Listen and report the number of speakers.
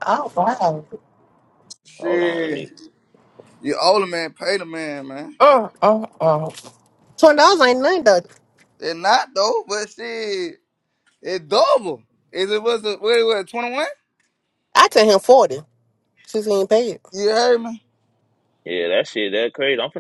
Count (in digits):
3